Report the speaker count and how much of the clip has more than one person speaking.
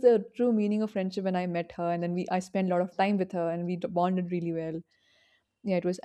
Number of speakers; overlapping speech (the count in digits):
1, no overlap